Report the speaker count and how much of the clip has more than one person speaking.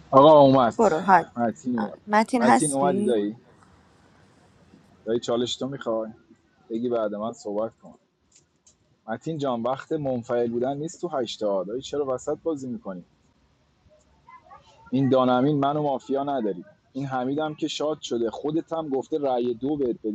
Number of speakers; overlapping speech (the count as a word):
two, about 5%